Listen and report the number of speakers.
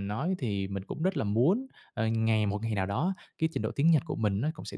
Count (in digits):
1